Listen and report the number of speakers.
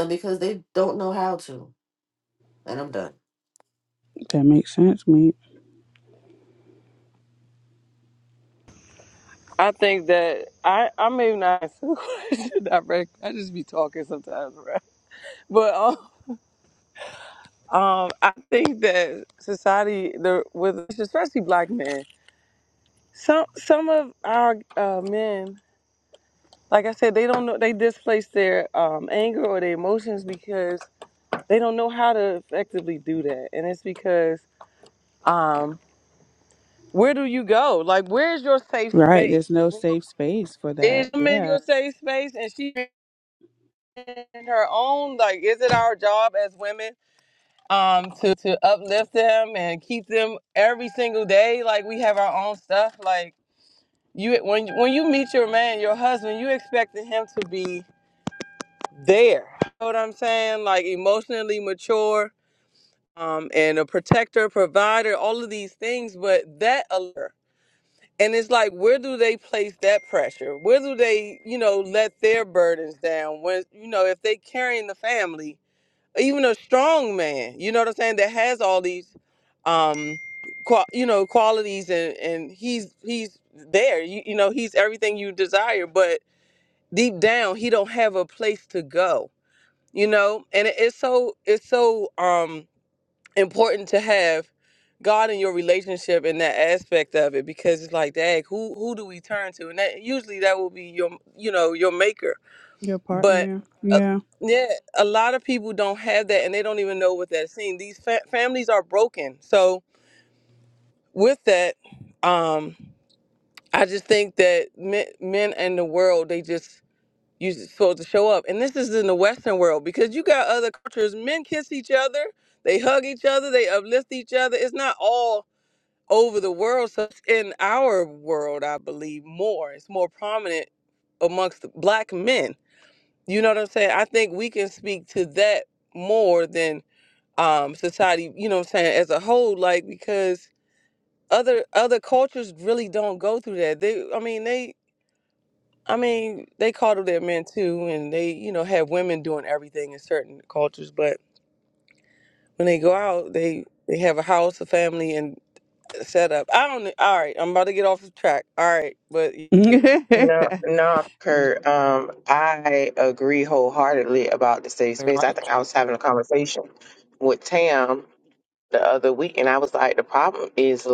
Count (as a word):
four